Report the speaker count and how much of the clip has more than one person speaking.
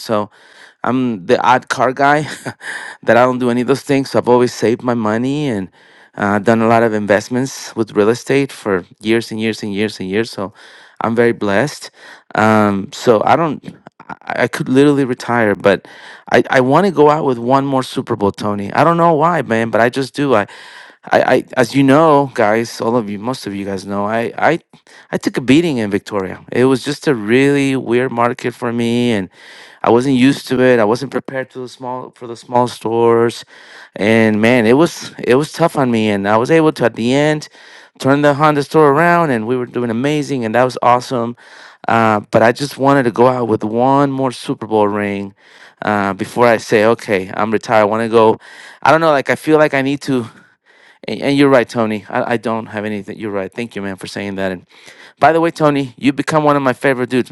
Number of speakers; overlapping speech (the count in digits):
1, no overlap